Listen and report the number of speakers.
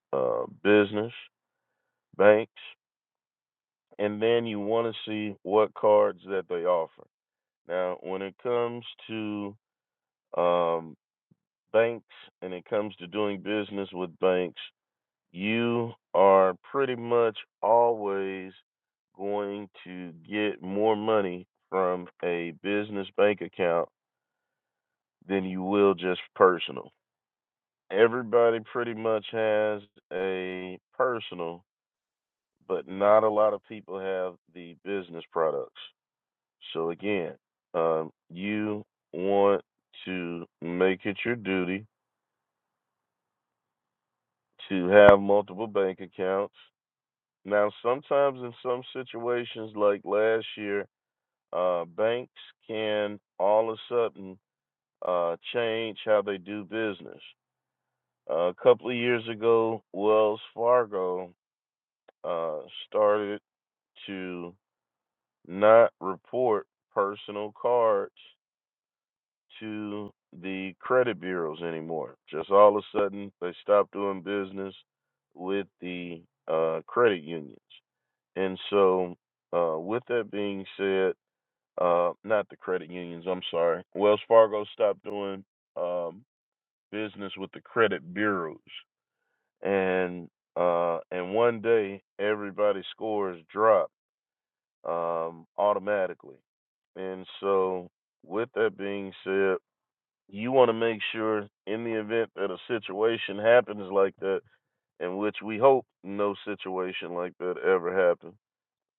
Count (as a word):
one